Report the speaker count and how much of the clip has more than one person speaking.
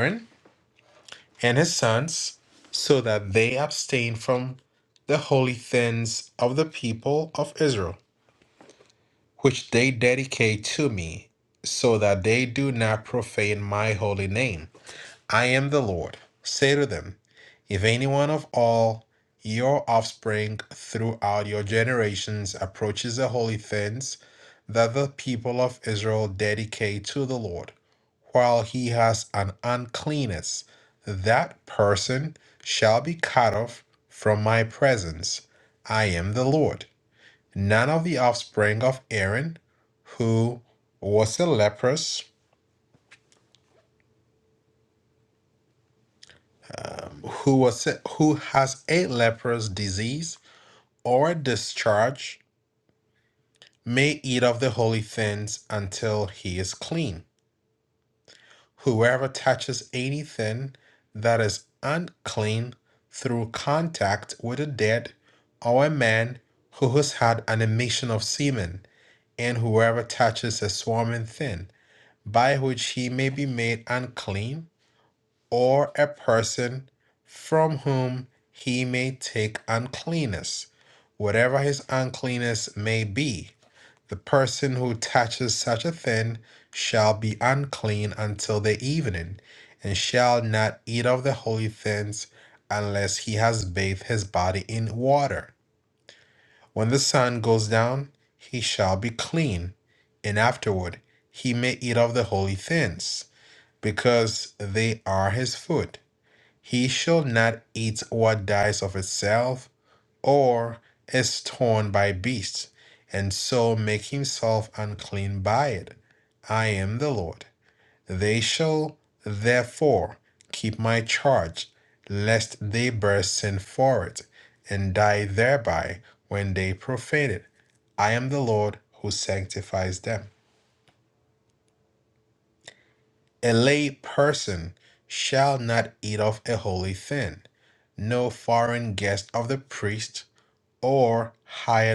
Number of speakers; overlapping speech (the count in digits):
1, no overlap